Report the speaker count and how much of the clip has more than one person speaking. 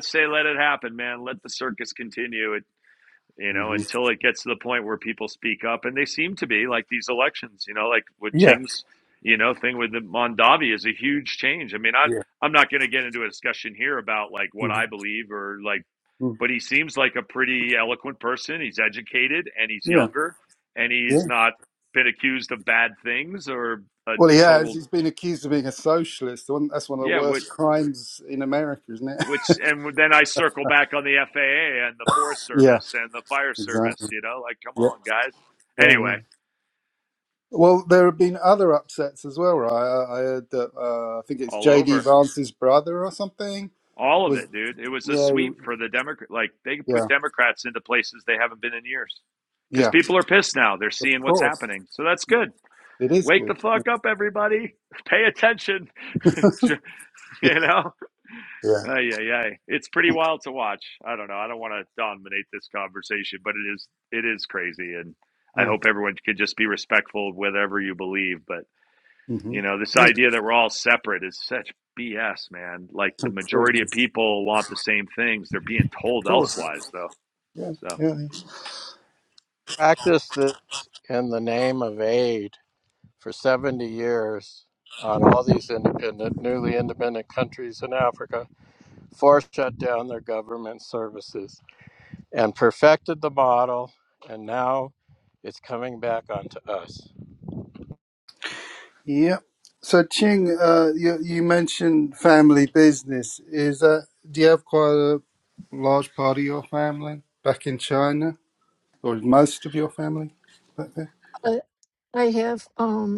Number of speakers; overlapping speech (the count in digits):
4, about 7%